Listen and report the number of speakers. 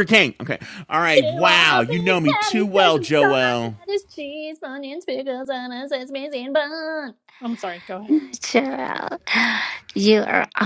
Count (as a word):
three